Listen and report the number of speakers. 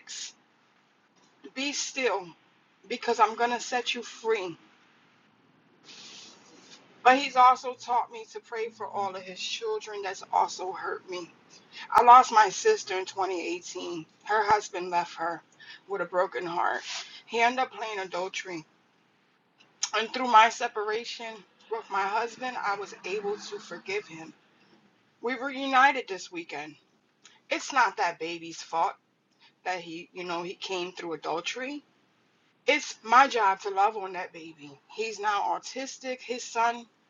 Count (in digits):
1